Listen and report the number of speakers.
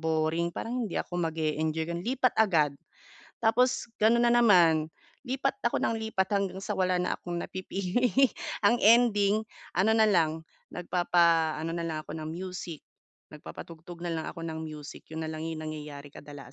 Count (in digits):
1